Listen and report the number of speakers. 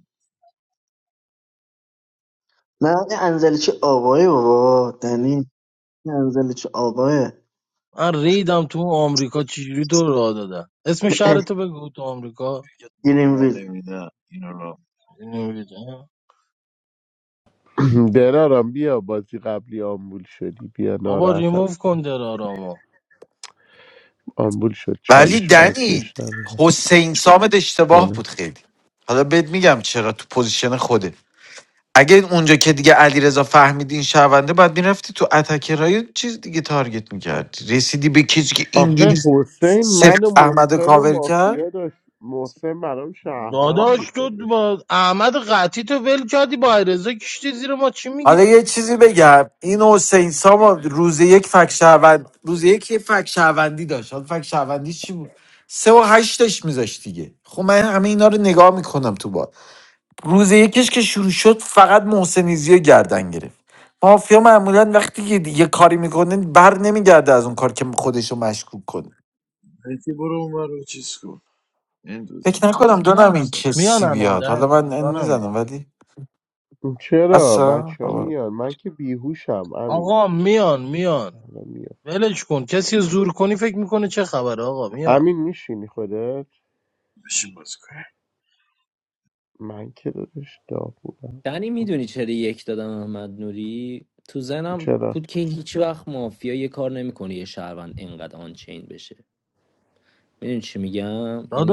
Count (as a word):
six